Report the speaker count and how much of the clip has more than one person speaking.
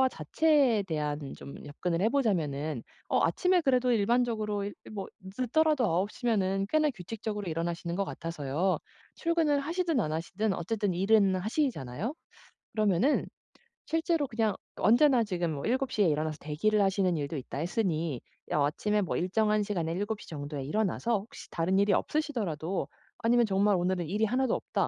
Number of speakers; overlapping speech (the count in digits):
1, no overlap